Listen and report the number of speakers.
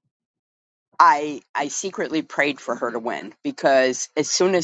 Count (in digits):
1